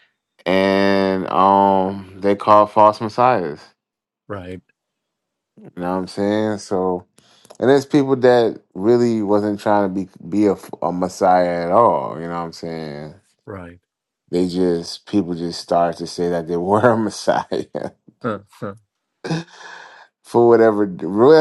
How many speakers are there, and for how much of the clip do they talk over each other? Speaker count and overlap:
two, no overlap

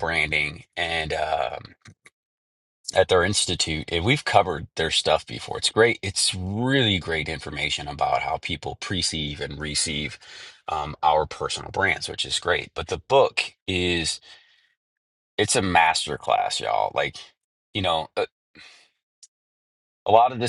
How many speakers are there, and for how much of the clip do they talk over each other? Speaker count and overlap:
one, no overlap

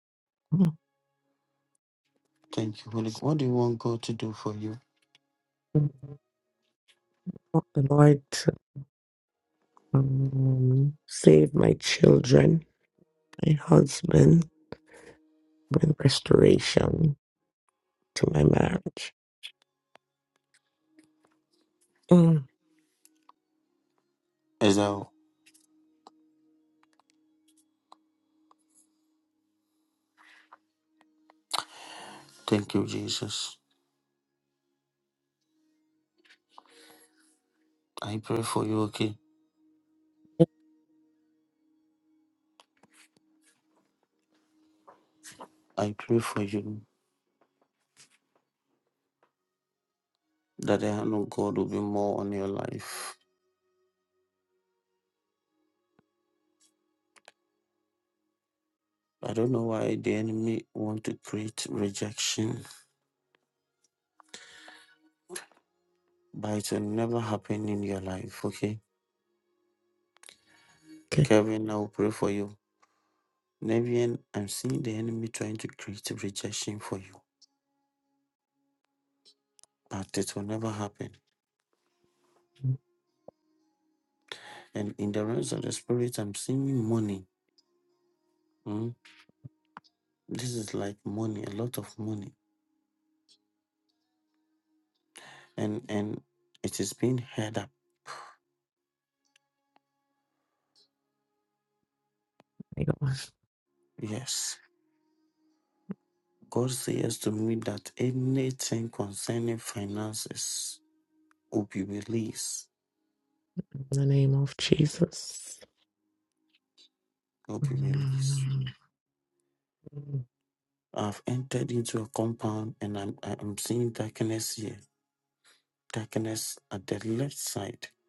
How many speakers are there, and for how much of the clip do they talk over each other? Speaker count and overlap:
two, about 1%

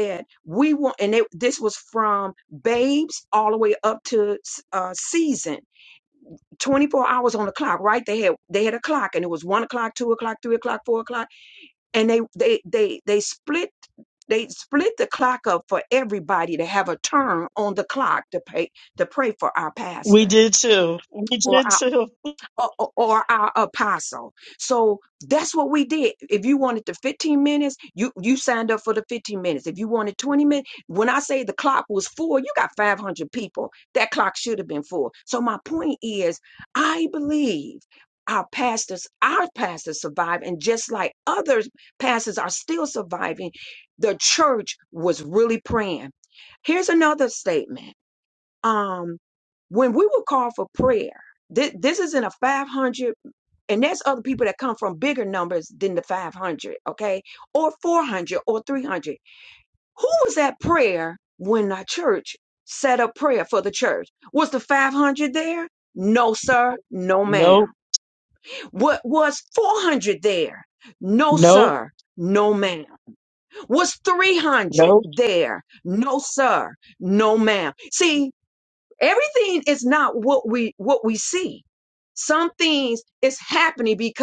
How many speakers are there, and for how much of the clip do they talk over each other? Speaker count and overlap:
two, about 2%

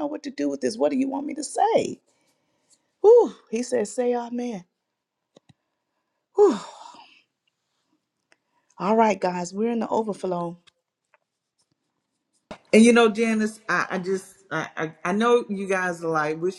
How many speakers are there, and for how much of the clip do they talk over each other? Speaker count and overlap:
two, no overlap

